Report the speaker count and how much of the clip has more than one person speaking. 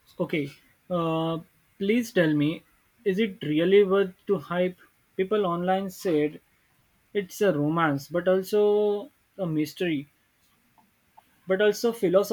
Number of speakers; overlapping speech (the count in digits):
1, no overlap